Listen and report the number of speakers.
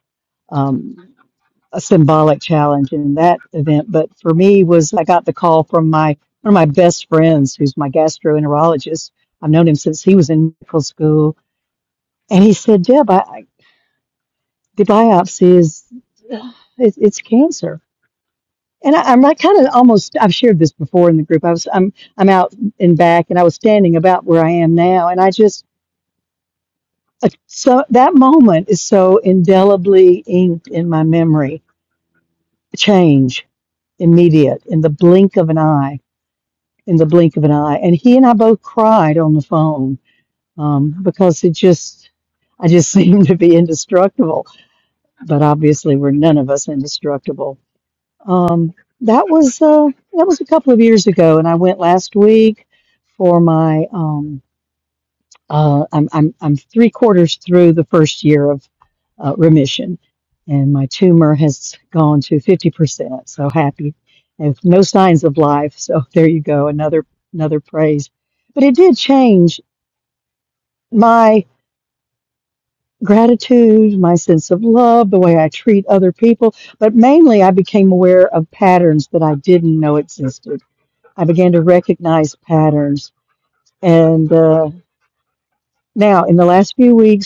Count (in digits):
1